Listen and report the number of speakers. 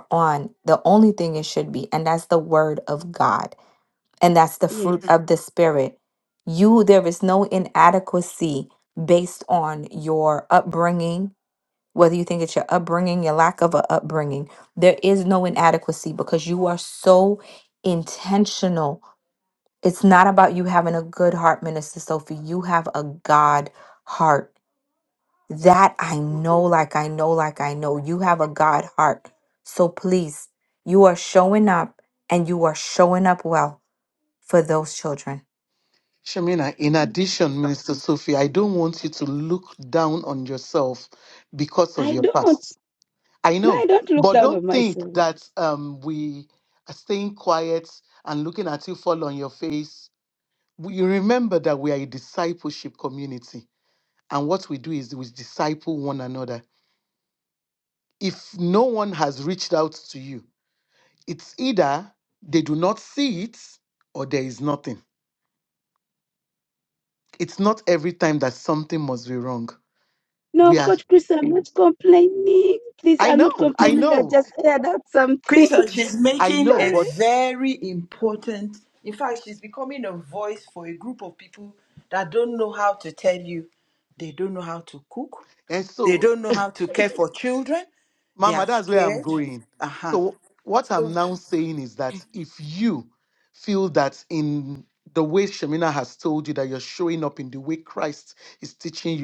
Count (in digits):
4